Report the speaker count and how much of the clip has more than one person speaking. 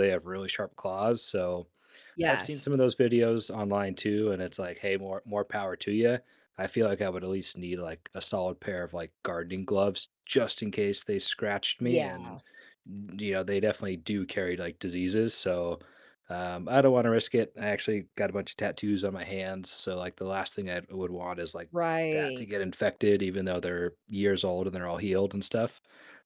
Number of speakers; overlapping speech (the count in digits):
2, about 4%